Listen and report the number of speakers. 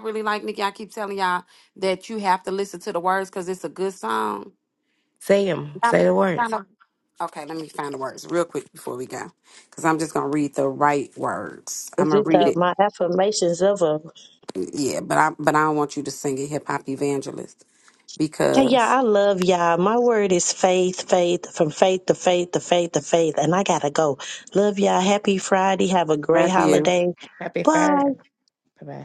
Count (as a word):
three